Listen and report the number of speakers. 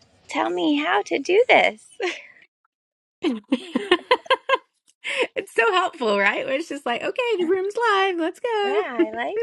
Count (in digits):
2